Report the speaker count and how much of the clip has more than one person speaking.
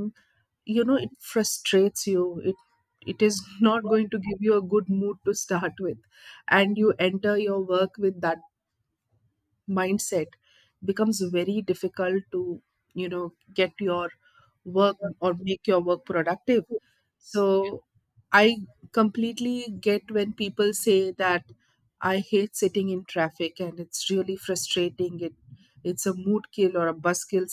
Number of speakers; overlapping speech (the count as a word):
one, no overlap